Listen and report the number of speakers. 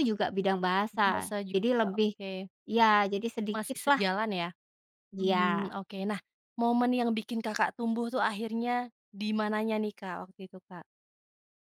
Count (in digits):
2